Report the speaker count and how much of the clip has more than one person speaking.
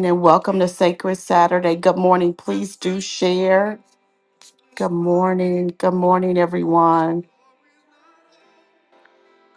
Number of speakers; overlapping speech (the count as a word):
one, no overlap